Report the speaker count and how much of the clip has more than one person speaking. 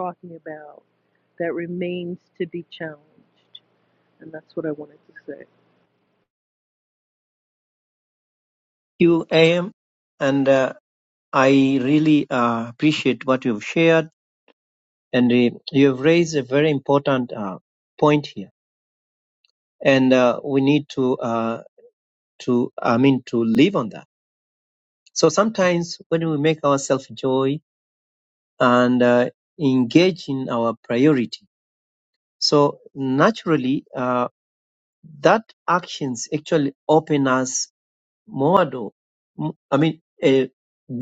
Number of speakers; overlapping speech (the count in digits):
2, no overlap